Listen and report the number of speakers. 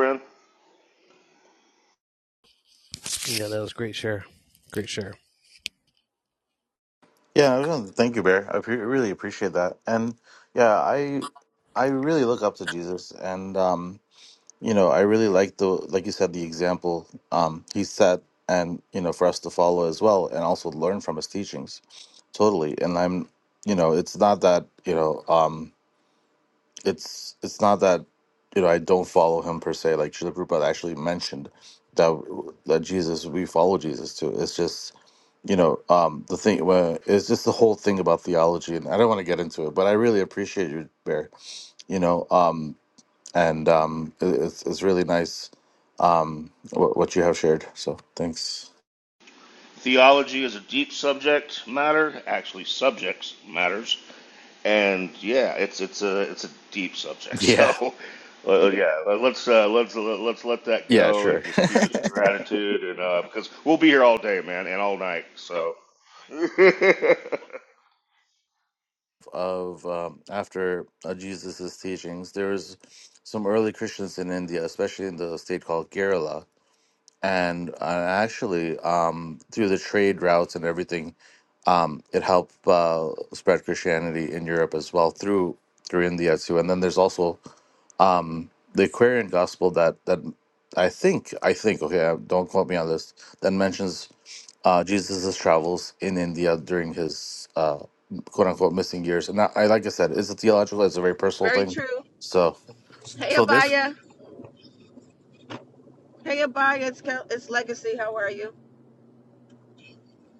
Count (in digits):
4